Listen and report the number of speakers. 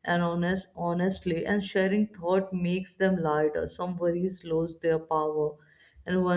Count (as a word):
one